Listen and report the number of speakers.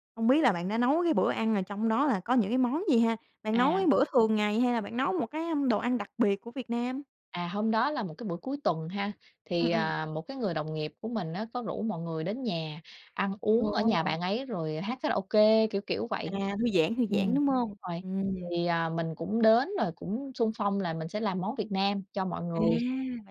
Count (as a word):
two